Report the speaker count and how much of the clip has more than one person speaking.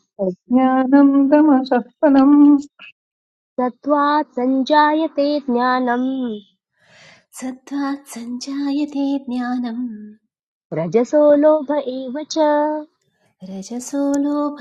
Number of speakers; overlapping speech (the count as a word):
three, no overlap